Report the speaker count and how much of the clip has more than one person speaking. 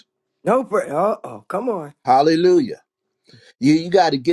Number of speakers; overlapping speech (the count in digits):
2, no overlap